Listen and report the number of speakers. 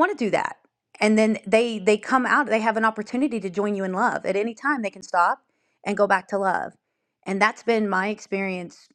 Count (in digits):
1